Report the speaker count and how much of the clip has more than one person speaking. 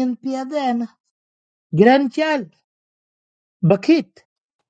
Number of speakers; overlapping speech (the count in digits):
1, no overlap